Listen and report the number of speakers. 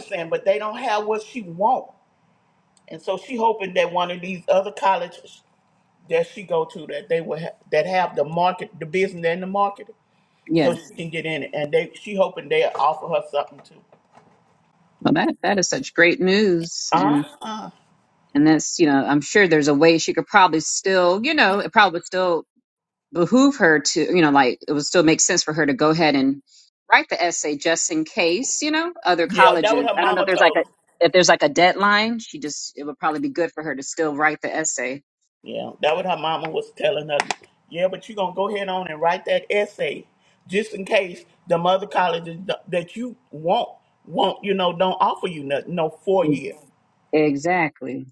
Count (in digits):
2